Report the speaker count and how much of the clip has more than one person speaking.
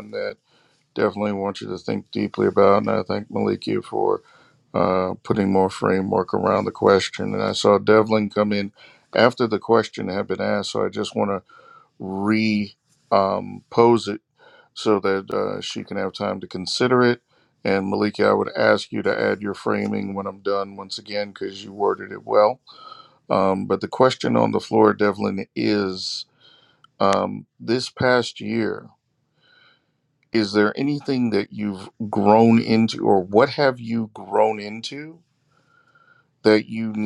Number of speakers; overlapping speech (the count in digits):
1, no overlap